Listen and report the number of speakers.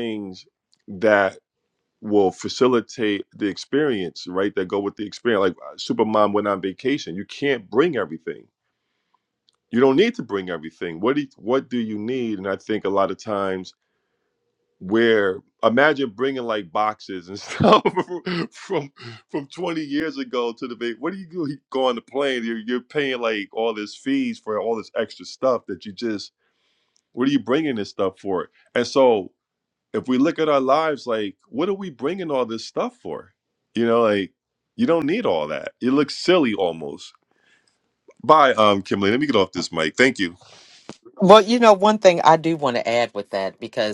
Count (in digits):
2